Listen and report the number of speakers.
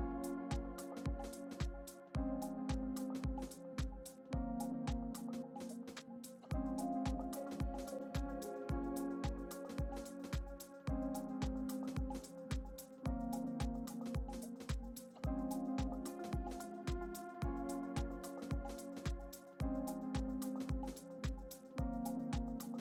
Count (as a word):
zero